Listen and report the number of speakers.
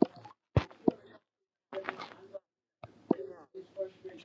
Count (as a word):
zero